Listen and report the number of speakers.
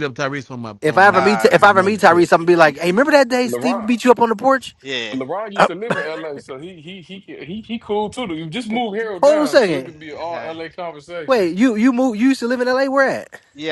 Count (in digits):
4